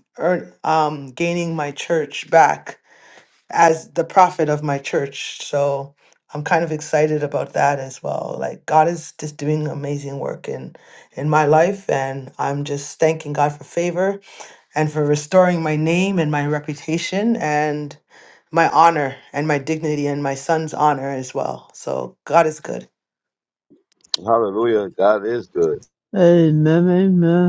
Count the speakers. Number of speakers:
three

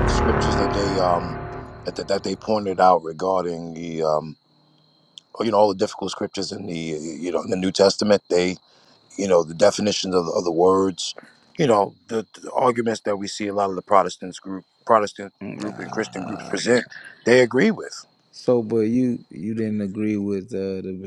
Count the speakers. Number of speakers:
two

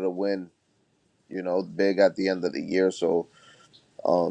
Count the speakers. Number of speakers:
one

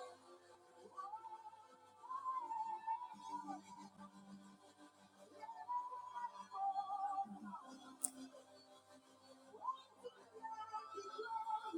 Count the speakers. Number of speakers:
zero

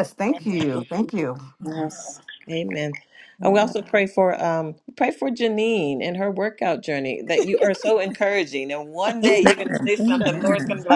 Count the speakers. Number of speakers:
three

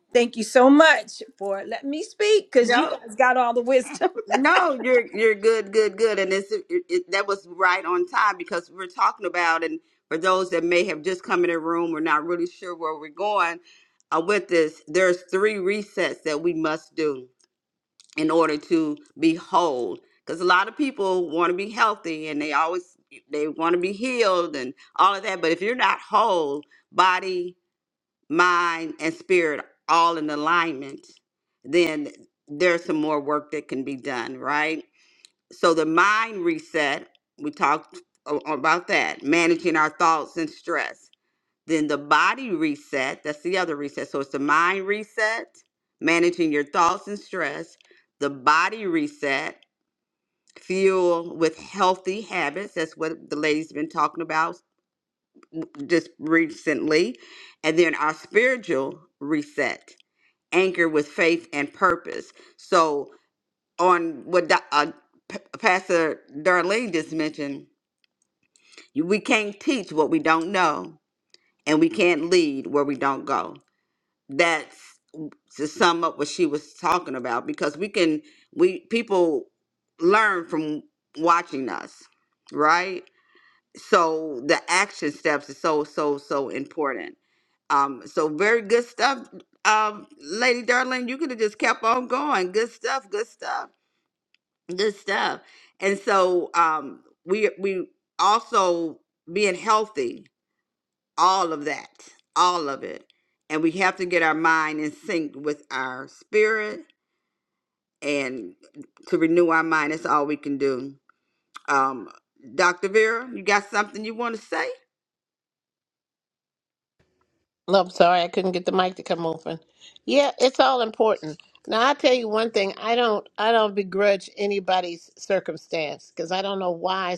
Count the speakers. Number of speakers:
three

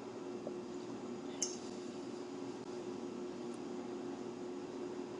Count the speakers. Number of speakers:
zero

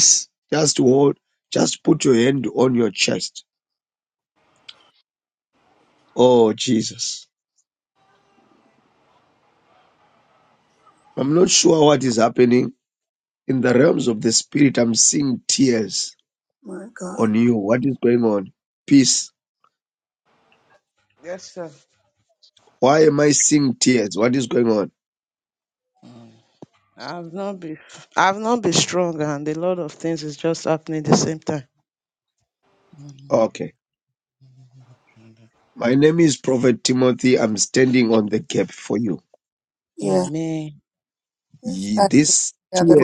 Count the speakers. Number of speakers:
three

